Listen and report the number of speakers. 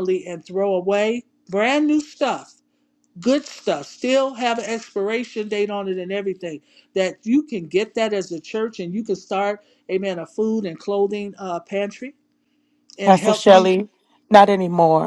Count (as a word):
two